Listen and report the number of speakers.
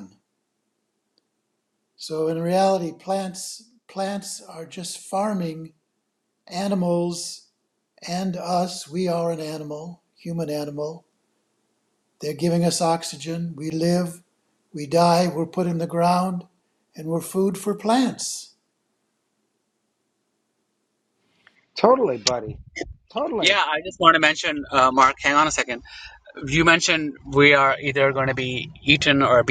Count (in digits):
3